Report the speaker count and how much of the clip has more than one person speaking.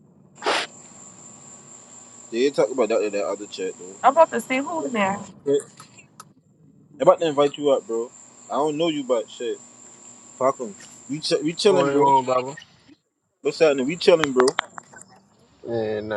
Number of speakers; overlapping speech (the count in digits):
3, about 3%